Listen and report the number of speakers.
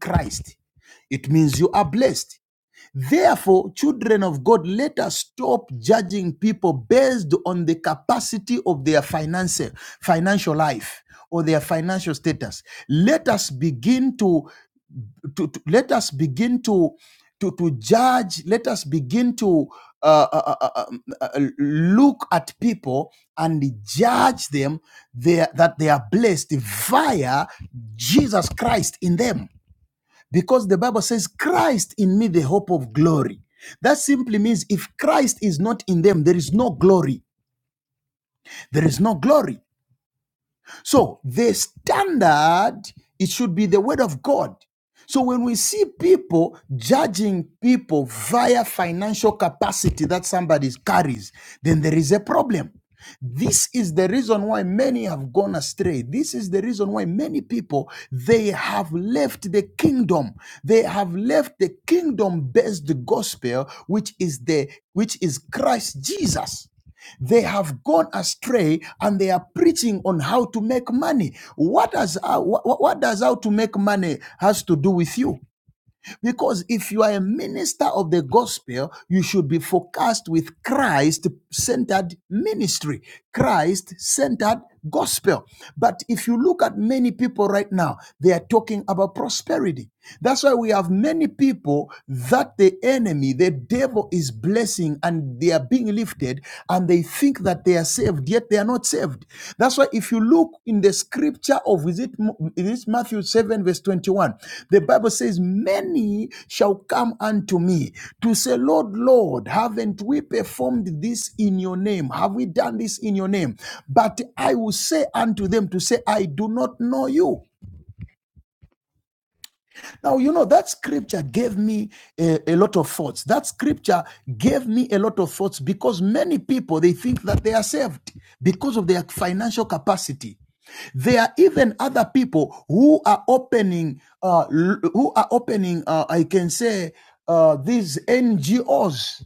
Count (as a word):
one